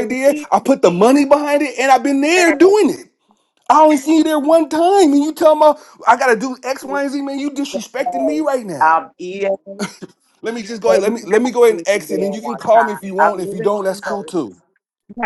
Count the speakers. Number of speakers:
two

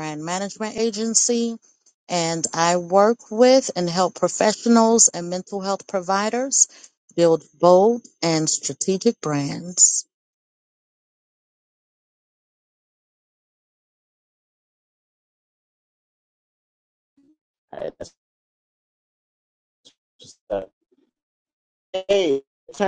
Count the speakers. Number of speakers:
two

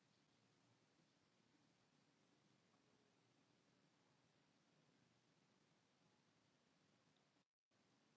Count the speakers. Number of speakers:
zero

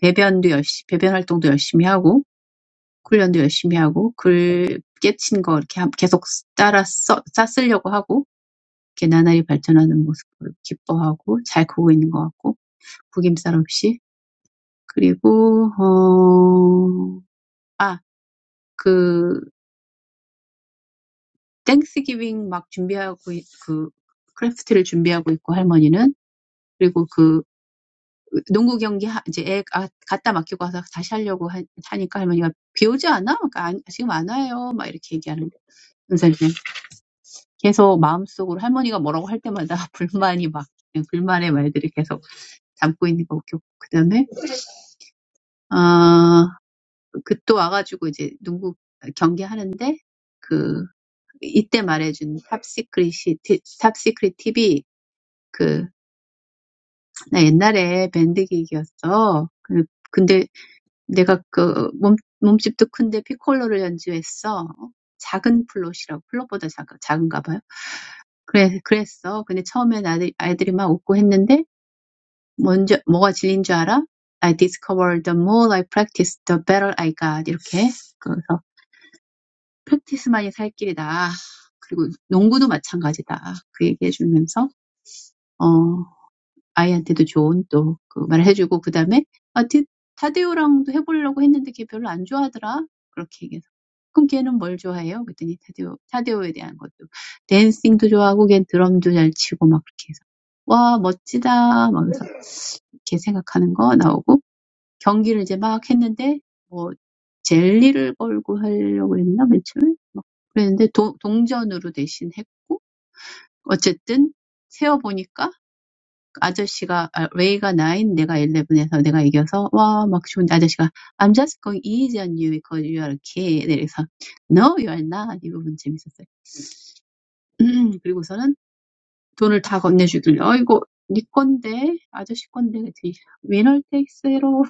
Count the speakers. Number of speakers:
one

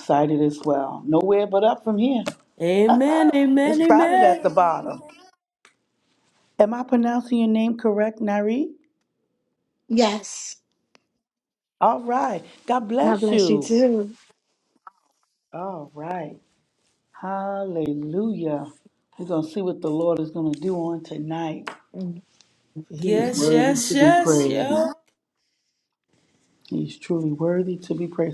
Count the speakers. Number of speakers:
three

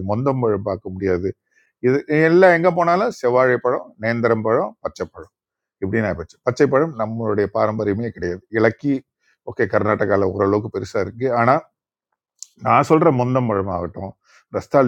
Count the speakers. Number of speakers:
one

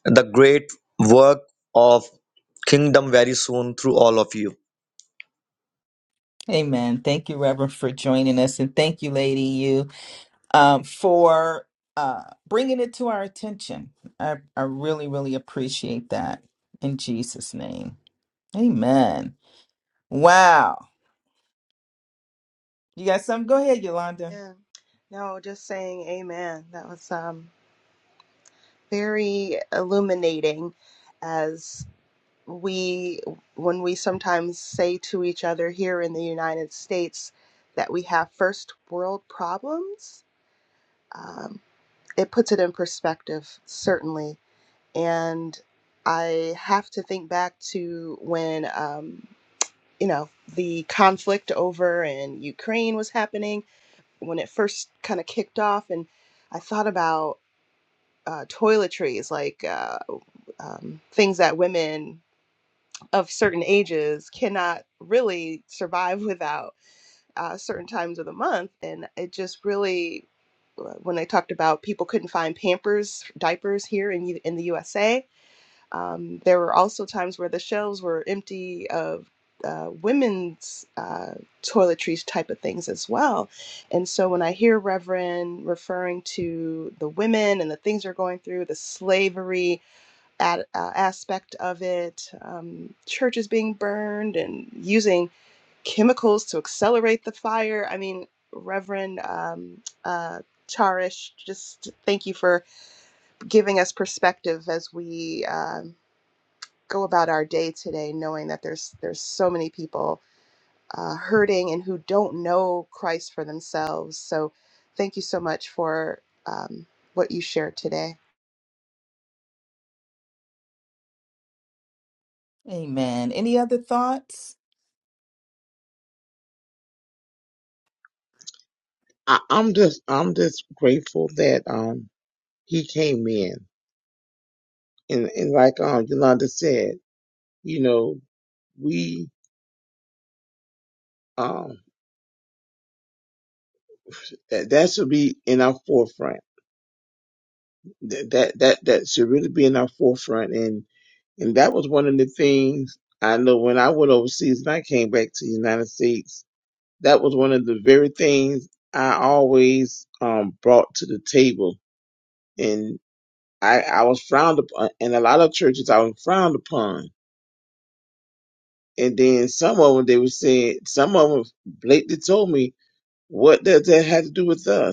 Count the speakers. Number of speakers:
four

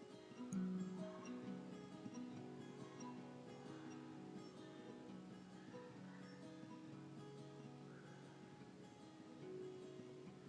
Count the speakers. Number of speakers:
zero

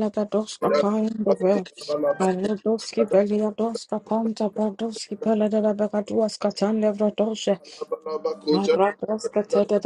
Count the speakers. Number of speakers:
two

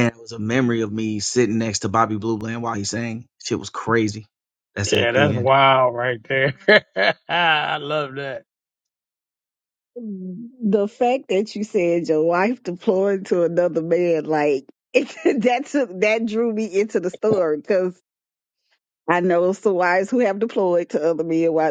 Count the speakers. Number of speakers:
three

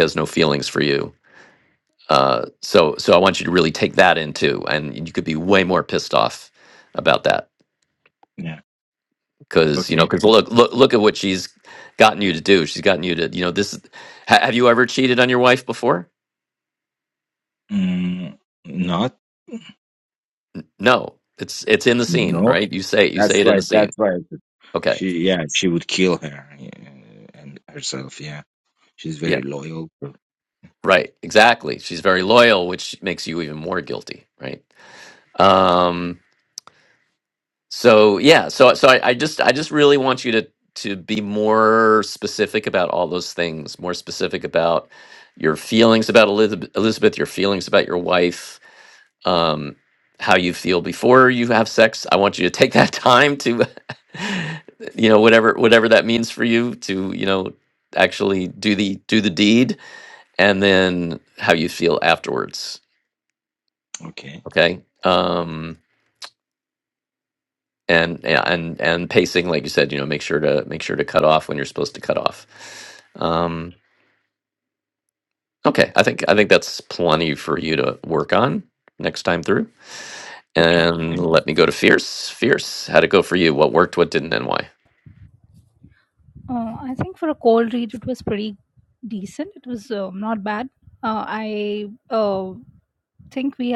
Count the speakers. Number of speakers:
three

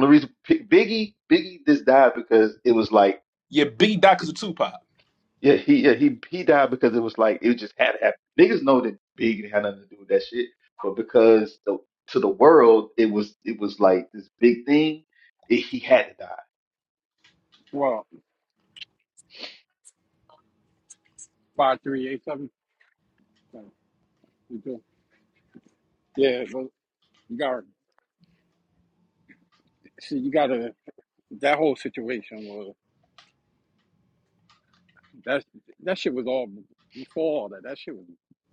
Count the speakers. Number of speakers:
three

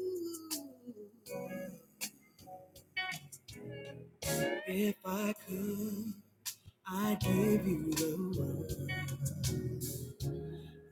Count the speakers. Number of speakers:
zero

